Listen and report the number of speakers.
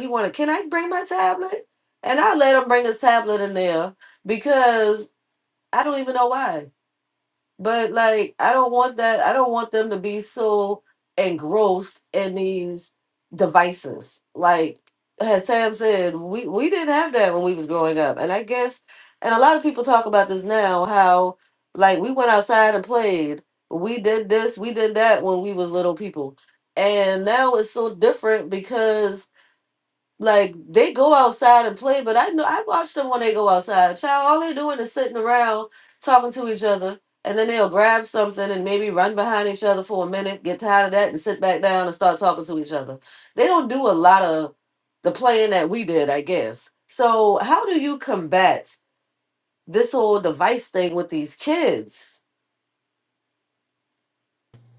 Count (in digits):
1